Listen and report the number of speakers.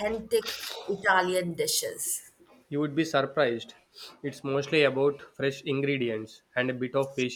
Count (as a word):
two